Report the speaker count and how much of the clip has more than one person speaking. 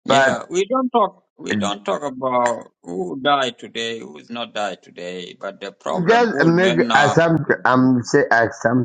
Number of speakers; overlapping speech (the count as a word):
two, about 24%